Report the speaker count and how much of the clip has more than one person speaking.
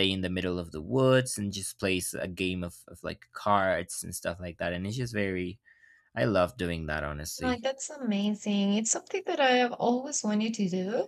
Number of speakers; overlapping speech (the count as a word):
two, about 1%